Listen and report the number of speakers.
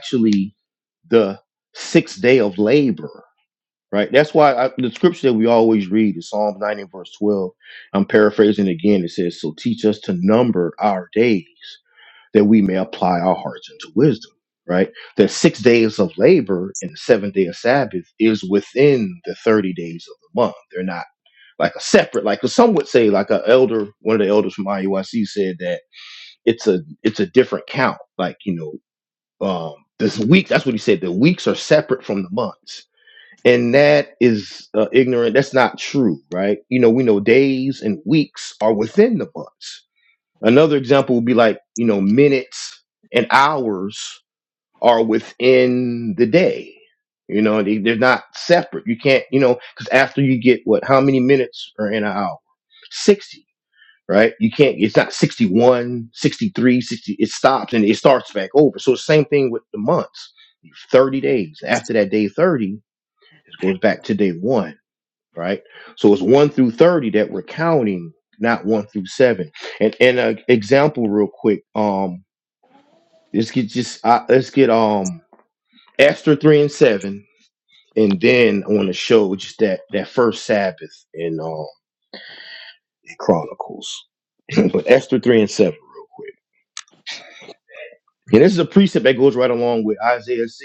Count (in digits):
1